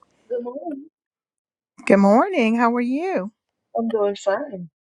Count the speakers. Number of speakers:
2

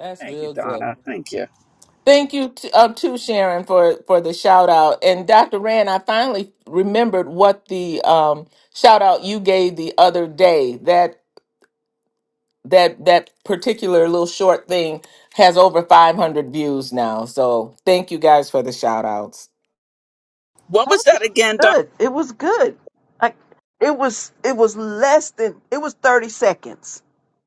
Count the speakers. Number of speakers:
3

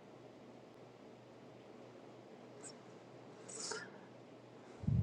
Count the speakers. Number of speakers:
0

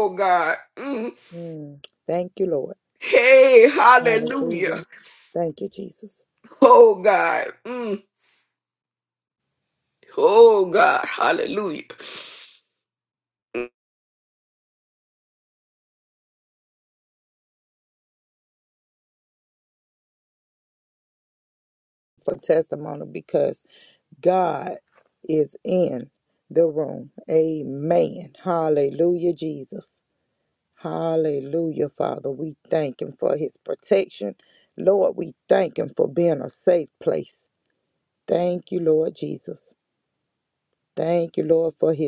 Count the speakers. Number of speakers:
2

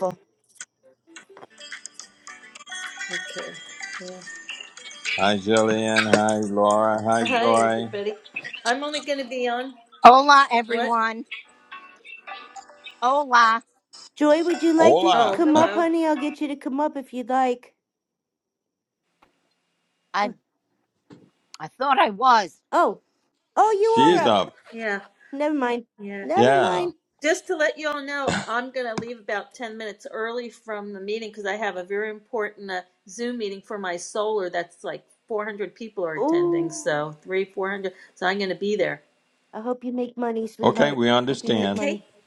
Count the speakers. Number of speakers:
4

